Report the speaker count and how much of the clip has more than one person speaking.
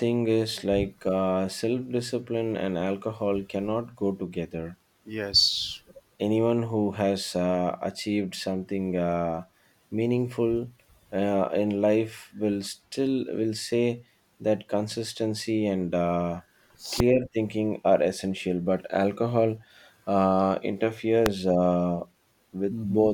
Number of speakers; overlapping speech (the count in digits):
2, about 2%